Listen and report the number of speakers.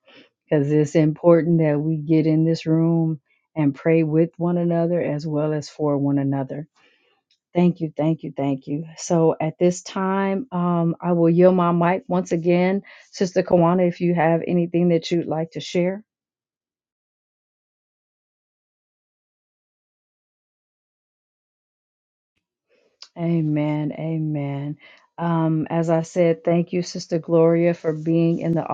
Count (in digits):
1